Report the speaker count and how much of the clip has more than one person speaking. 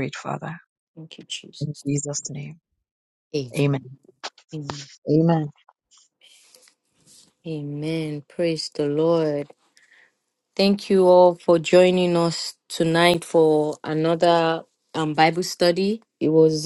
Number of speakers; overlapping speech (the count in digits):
2, no overlap